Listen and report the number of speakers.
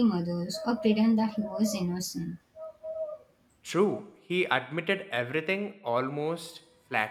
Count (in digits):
2